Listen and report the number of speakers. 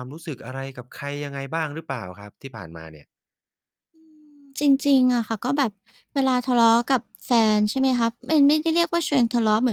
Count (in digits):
2